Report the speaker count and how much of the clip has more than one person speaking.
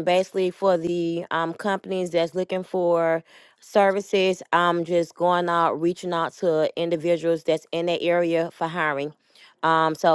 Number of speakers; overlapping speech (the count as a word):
one, no overlap